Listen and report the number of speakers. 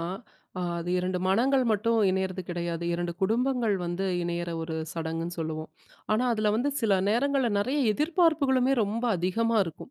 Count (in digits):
1